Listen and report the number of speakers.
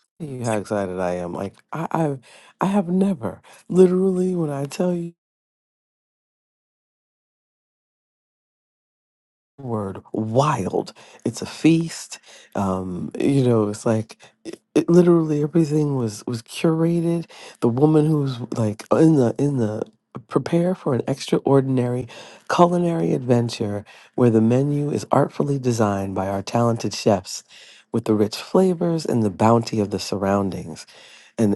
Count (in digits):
1